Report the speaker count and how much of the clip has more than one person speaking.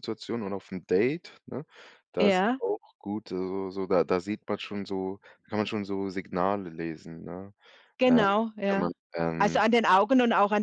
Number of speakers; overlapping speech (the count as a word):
two, about 10%